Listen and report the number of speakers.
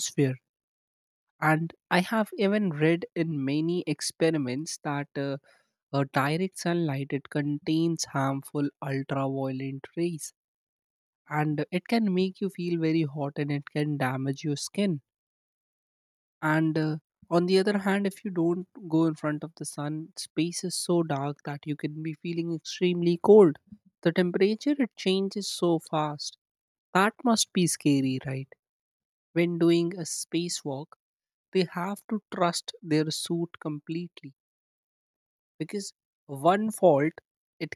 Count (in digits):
1